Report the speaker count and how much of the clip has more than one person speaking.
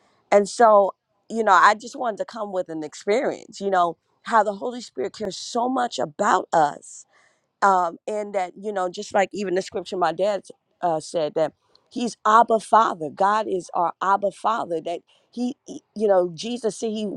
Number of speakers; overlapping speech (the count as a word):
one, no overlap